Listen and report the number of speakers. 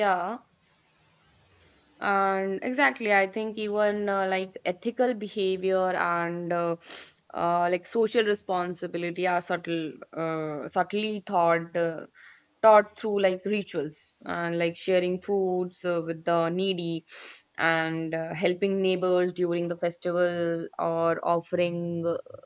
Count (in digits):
1